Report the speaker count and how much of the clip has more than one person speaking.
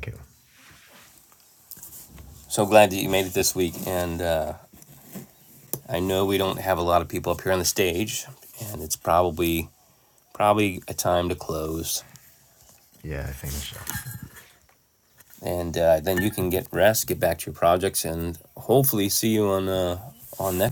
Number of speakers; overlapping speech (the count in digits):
2, no overlap